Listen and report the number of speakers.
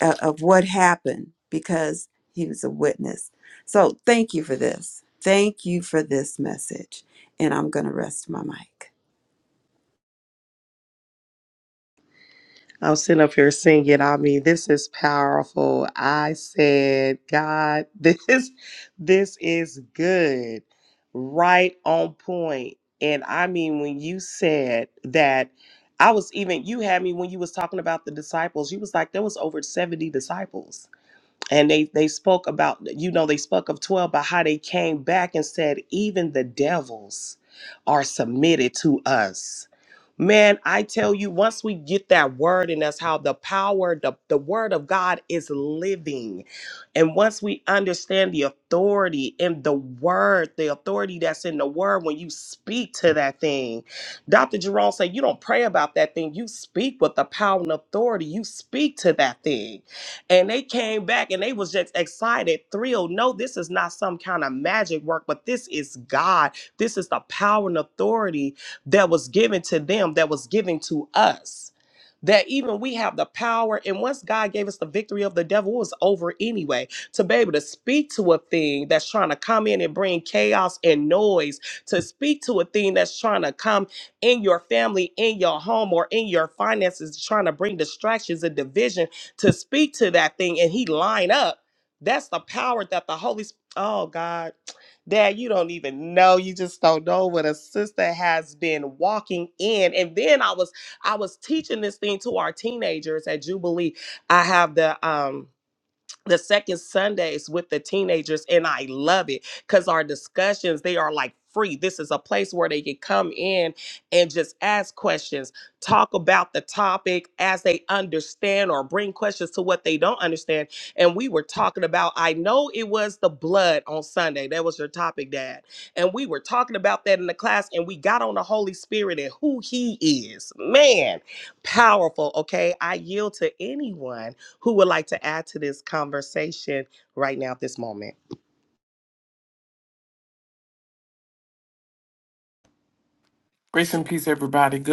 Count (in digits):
3